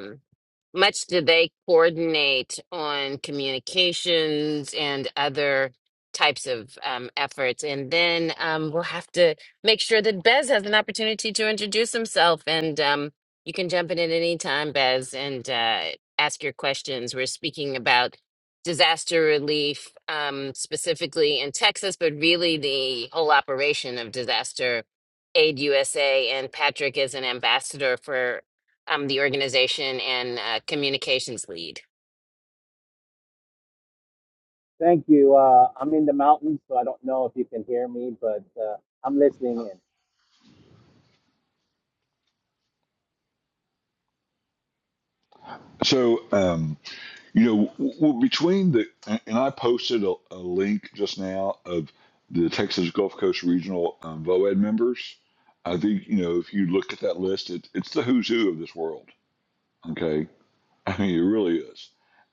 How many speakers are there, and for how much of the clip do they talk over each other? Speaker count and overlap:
three, no overlap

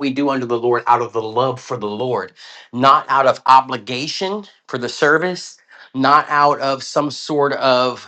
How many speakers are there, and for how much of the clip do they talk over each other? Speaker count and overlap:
one, no overlap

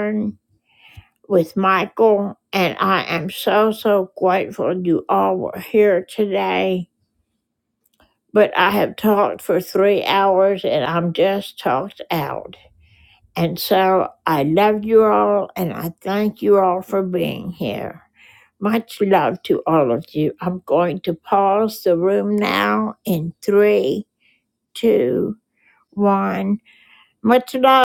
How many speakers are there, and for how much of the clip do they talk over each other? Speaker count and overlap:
one, no overlap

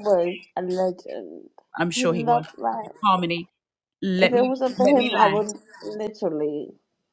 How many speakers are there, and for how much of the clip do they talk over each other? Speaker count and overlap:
two, about 20%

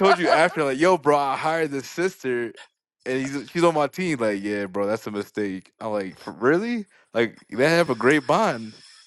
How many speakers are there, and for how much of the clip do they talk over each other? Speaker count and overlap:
one, no overlap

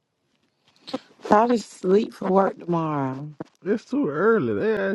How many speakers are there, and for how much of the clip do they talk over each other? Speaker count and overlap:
two, no overlap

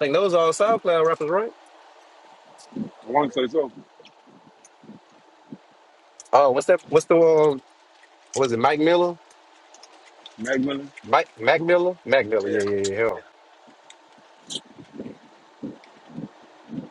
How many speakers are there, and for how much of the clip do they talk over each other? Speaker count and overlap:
two, about 1%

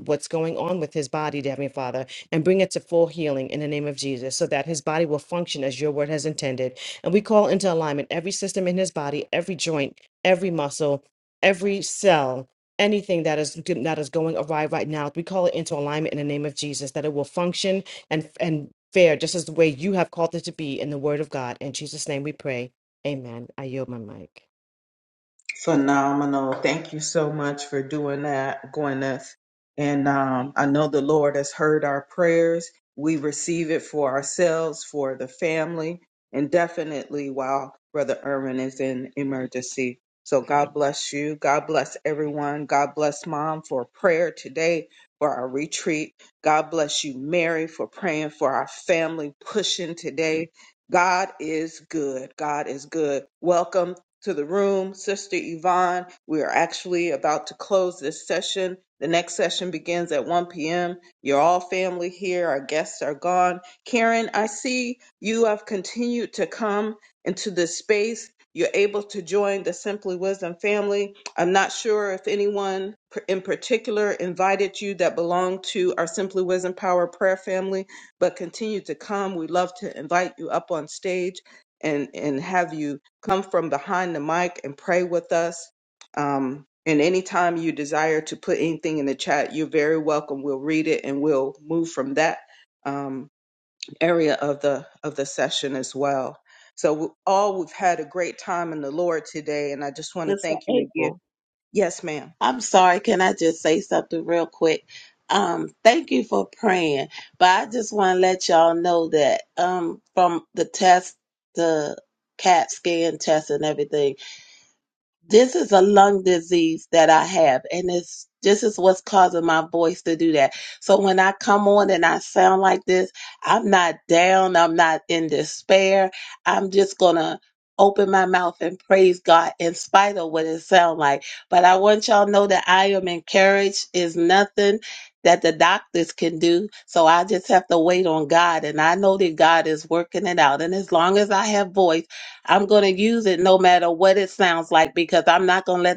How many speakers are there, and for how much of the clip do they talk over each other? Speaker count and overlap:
three, about 1%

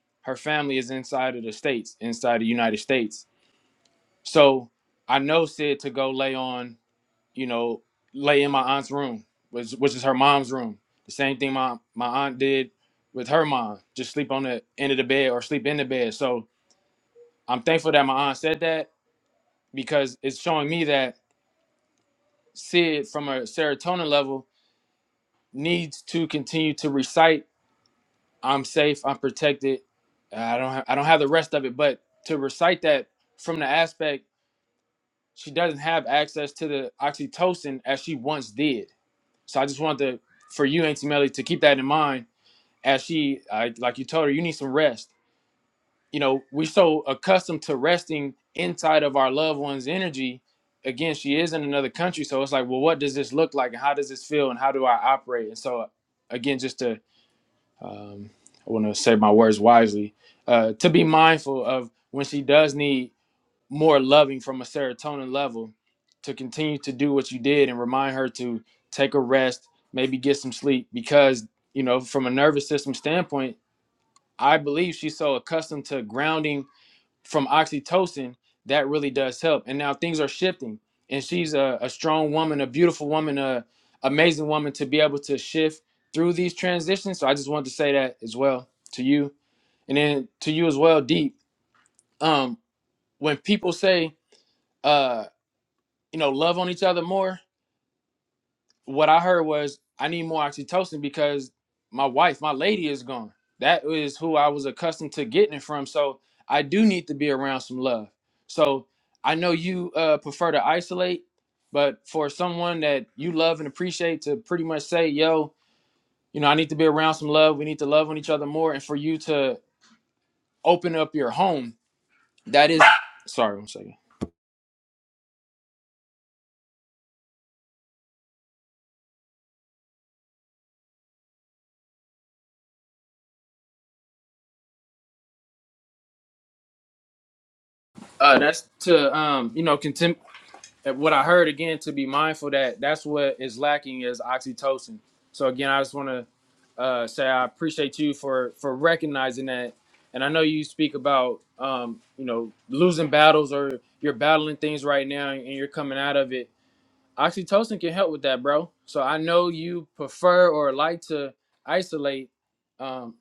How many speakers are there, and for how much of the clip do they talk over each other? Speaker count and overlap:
one, no overlap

